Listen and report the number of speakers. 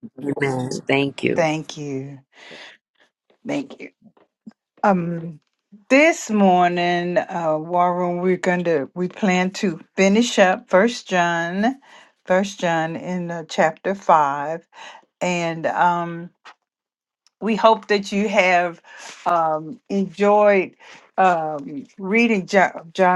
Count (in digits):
2